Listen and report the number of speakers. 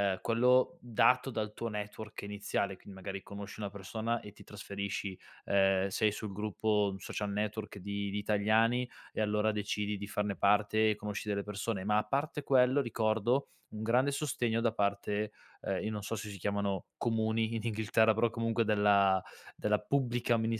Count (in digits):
1